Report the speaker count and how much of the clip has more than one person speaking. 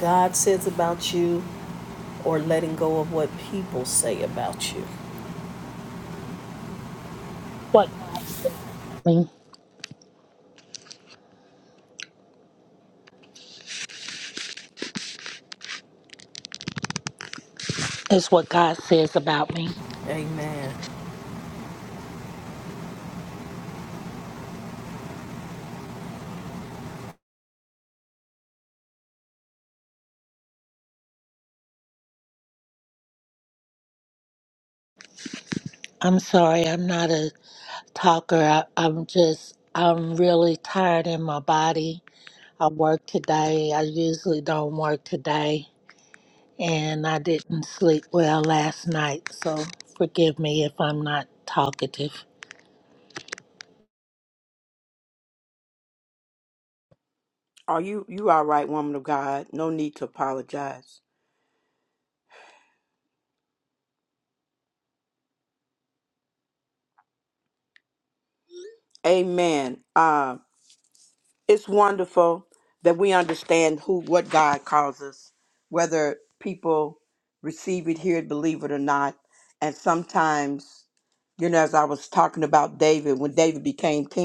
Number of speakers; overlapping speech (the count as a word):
three, no overlap